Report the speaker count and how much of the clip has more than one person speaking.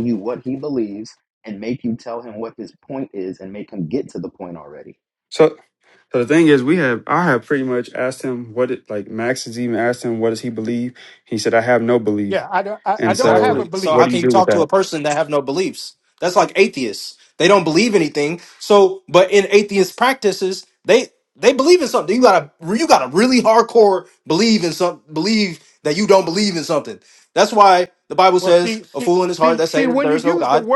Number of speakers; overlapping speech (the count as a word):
four, about 9%